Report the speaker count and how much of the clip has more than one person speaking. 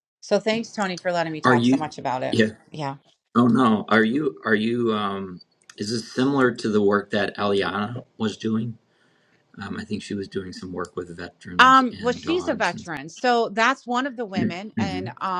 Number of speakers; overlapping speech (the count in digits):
2, about 13%